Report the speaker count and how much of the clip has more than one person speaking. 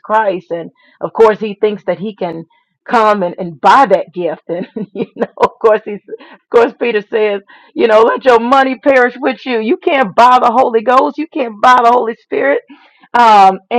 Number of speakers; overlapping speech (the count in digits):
1, no overlap